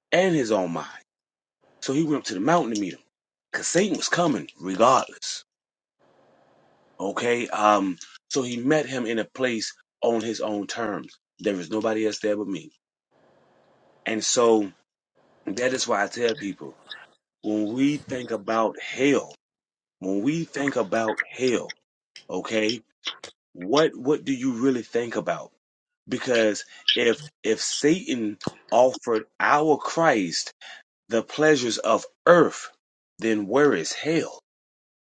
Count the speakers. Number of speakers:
one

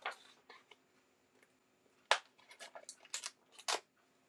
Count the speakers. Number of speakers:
zero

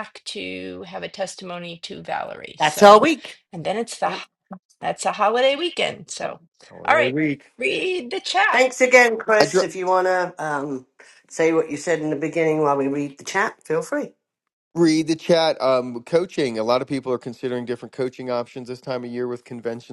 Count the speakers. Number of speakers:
three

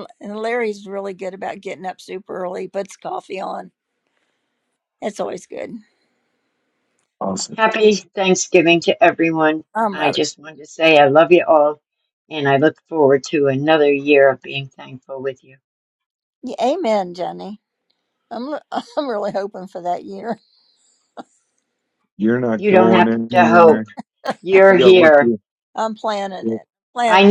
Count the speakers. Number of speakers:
three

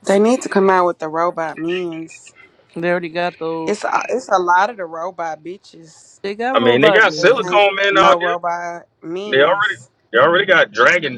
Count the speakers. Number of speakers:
three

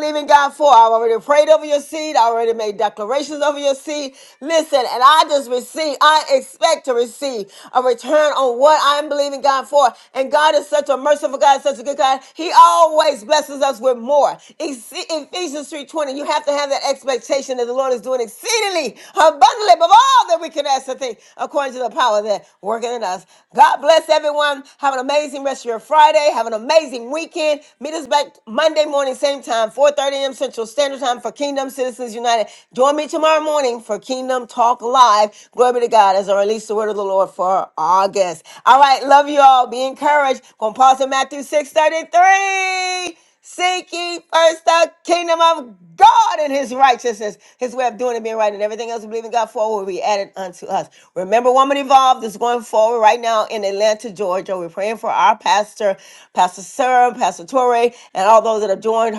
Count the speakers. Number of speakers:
one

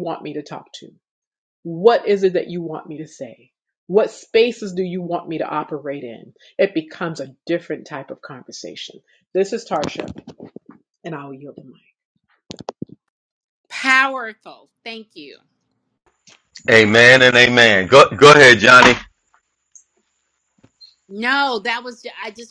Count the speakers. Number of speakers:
three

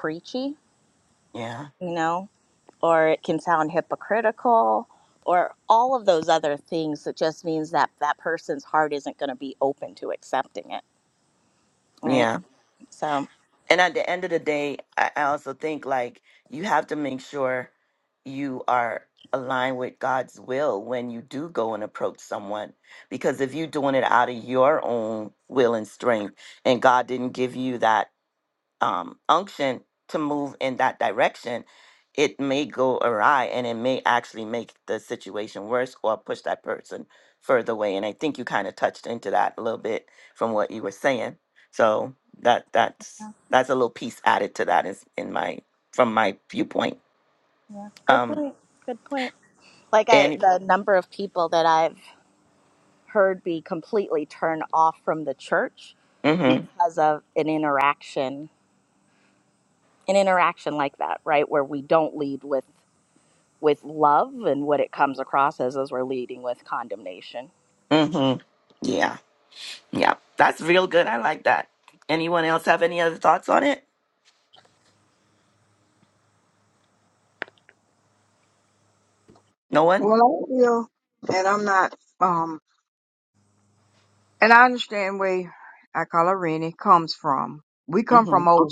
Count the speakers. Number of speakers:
three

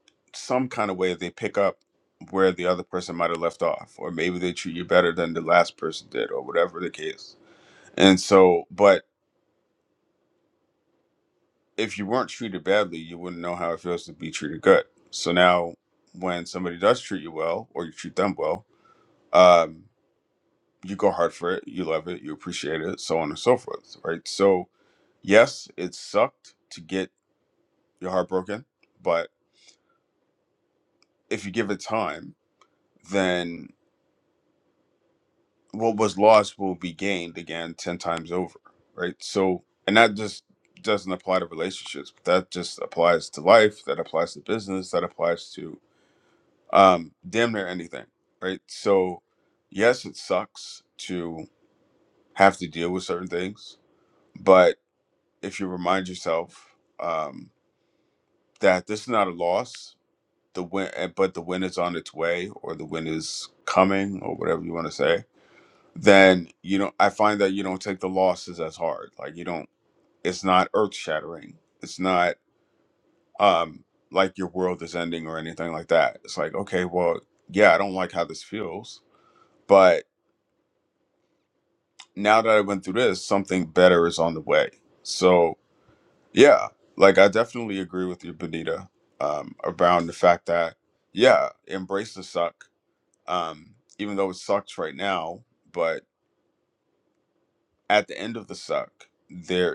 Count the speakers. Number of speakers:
one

